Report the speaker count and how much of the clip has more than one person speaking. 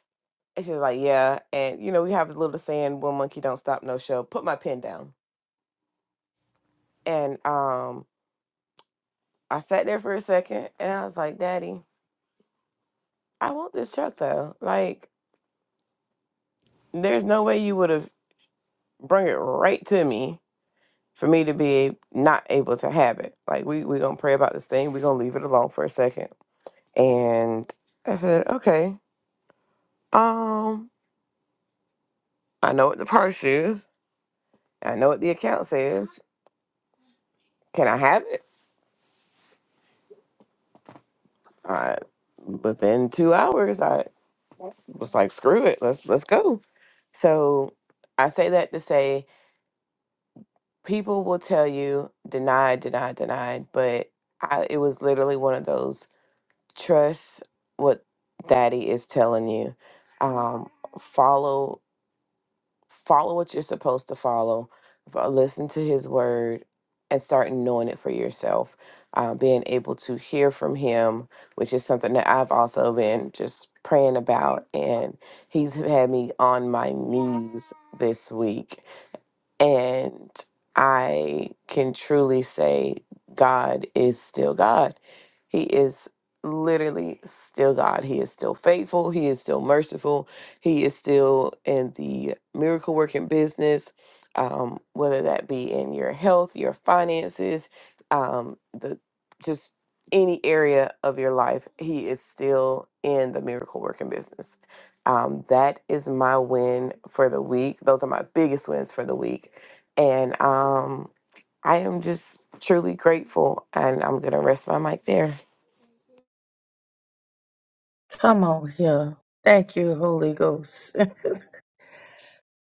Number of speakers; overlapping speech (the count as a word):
two, no overlap